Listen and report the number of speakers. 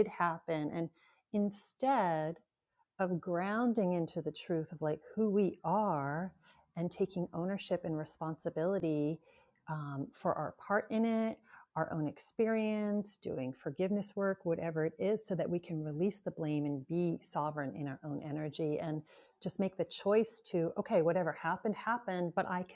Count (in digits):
1